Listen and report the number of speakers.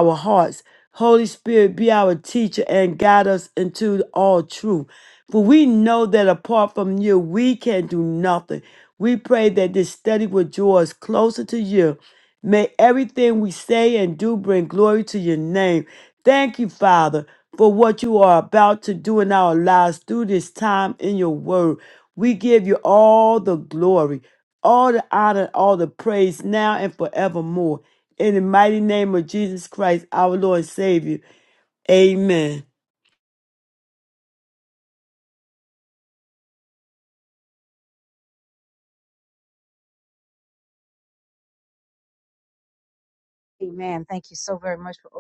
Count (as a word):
two